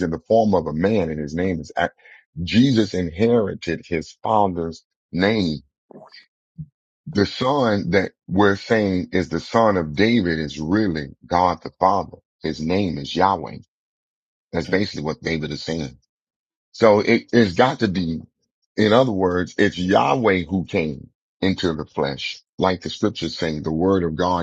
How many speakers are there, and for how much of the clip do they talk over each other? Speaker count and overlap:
1, no overlap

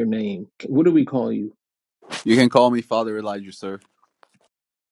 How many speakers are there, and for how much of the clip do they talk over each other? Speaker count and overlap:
2, no overlap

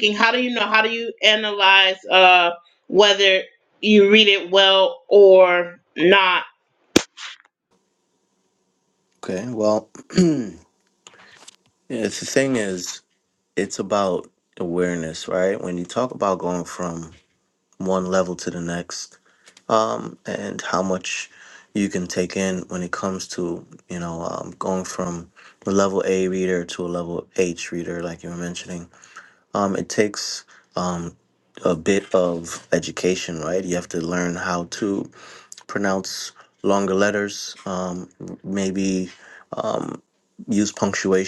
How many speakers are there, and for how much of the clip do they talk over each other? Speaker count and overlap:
2, no overlap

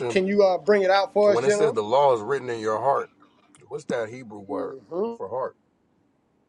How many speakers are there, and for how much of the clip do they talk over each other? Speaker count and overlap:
2, about 14%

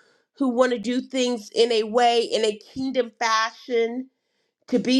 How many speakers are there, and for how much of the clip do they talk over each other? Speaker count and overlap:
1, no overlap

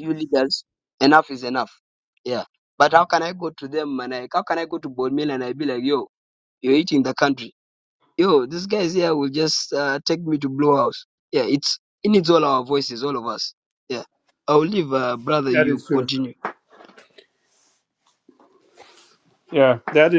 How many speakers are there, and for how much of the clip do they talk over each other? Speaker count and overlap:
2, about 3%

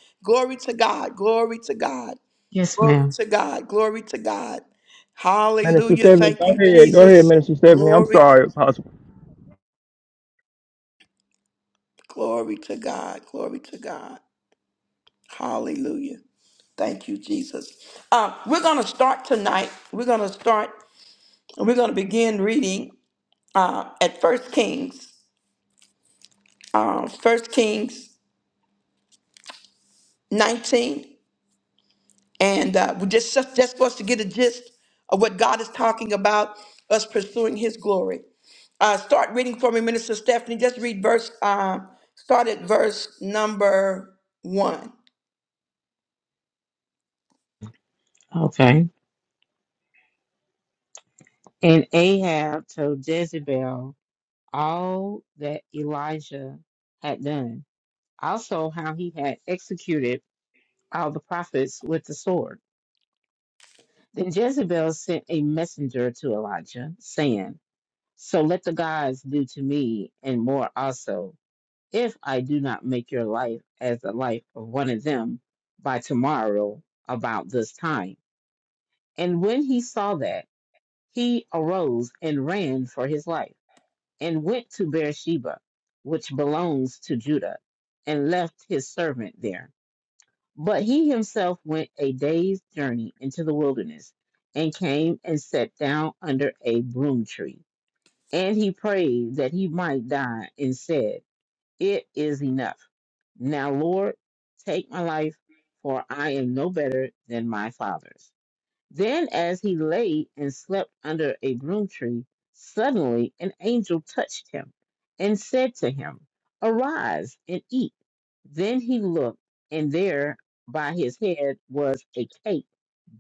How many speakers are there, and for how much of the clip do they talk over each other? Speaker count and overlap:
3, about 2%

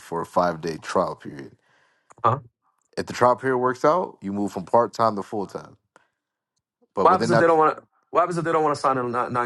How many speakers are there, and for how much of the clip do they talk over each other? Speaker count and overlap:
2, about 5%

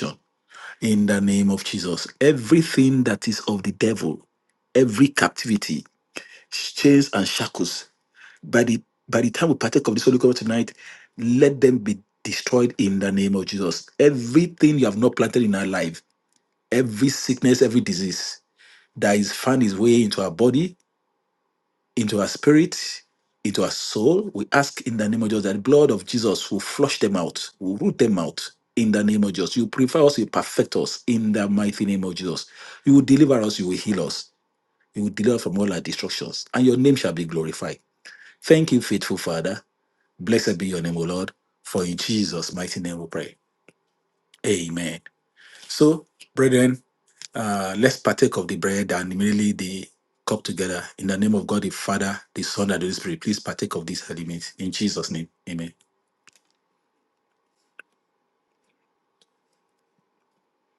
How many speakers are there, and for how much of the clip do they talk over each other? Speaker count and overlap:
1, no overlap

